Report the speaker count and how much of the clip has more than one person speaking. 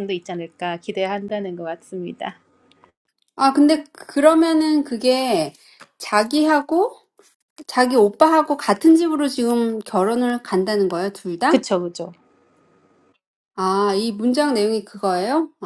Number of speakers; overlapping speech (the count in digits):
2, about 1%